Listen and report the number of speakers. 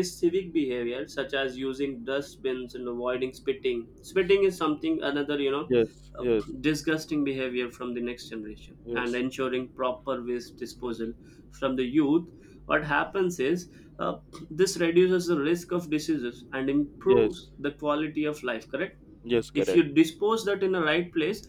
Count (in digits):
2